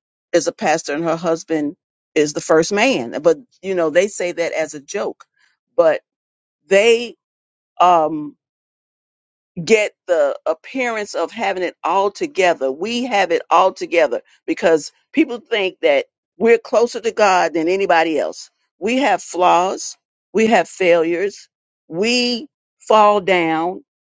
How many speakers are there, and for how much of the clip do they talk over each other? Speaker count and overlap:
one, no overlap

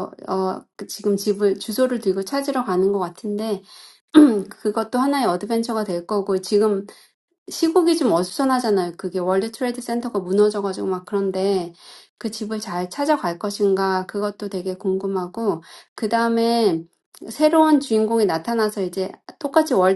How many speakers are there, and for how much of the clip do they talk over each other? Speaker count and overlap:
one, no overlap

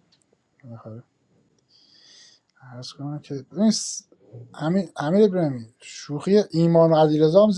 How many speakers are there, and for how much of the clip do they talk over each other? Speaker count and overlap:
one, no overlap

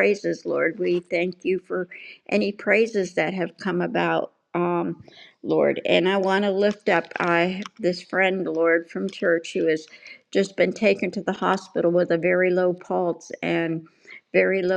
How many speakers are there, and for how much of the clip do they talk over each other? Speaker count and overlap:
one, no overlap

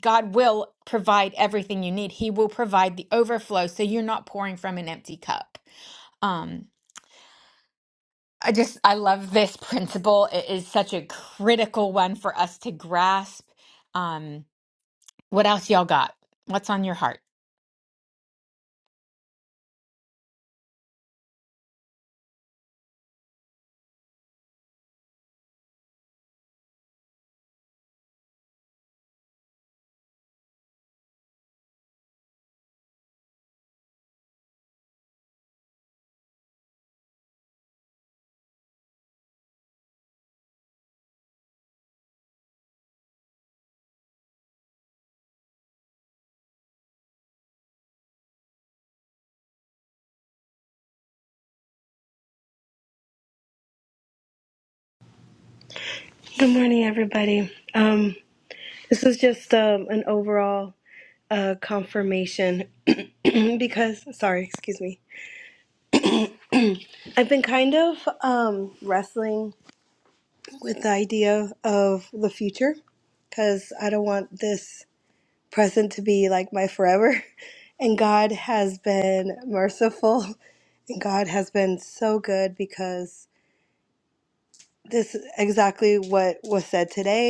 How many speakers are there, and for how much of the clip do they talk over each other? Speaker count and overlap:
two, no overlap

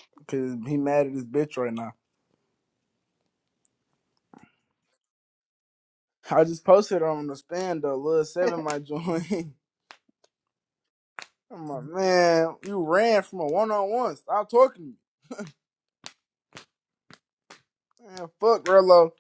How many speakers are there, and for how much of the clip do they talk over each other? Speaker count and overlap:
one, no overlap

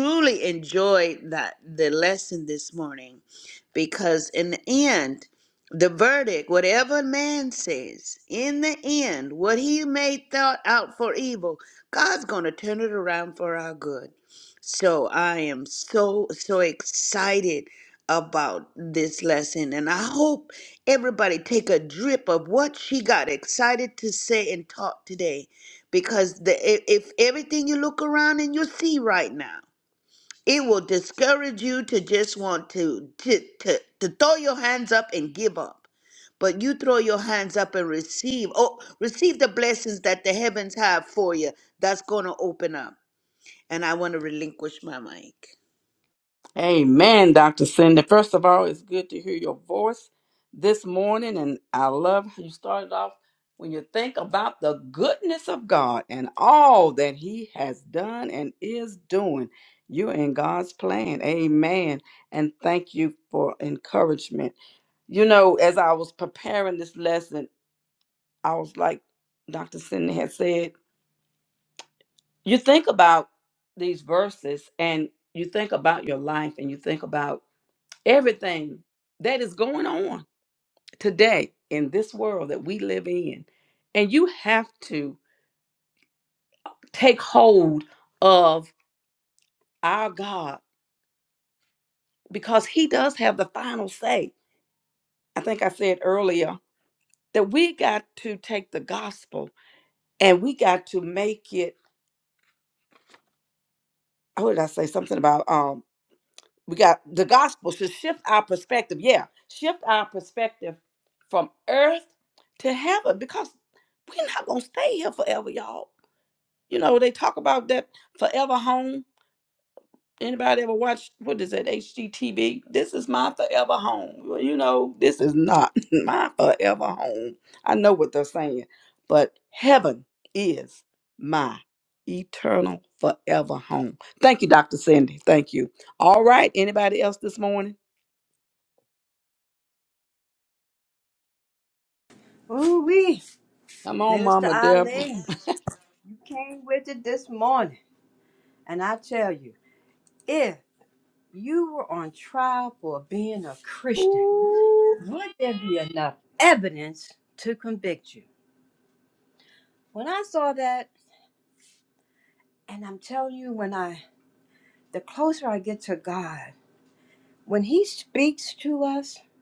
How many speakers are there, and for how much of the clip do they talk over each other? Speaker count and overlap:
three, about 1%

